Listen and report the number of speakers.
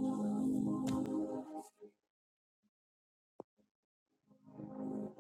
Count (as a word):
zero